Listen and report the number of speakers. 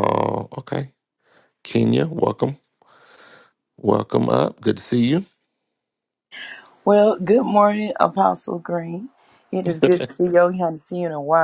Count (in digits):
2